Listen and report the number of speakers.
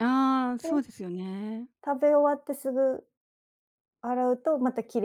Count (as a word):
two